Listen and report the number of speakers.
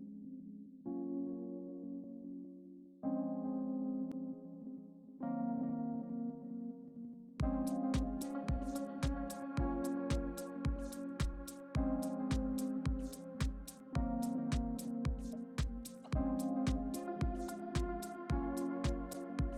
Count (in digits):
0